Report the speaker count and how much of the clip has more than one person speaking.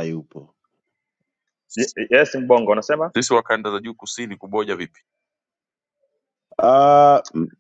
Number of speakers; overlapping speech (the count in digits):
3, no overlap